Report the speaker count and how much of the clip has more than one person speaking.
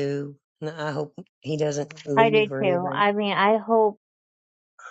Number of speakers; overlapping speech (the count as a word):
two, about 18%